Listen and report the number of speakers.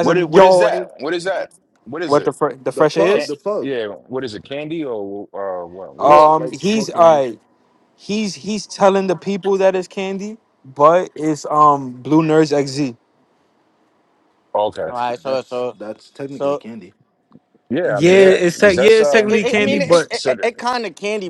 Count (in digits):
4